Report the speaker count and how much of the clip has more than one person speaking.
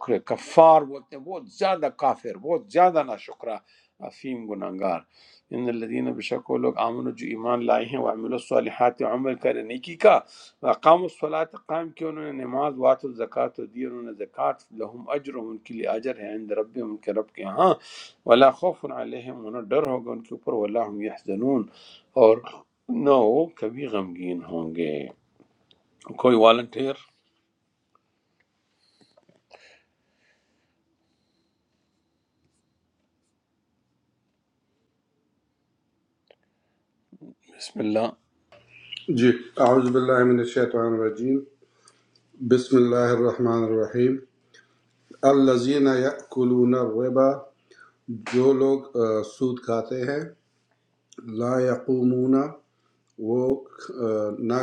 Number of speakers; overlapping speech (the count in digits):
2, no overlap